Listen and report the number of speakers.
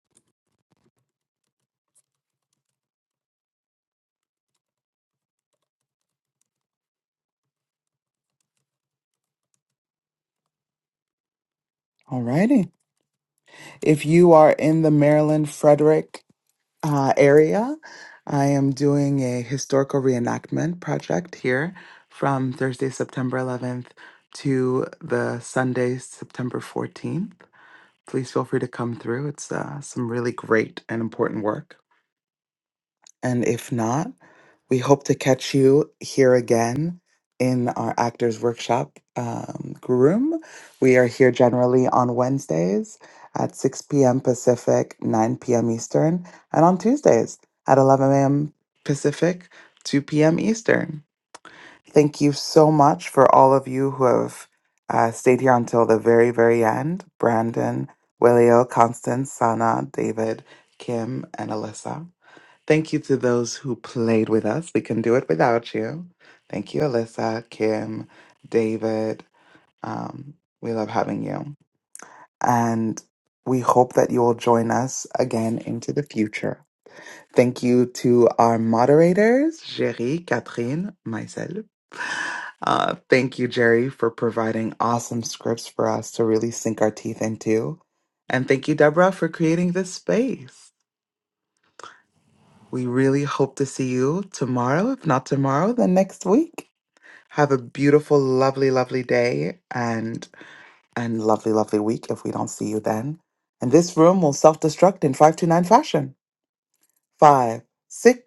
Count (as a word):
one